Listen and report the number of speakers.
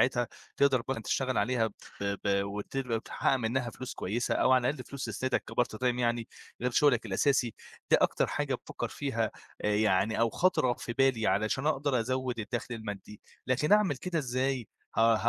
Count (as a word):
one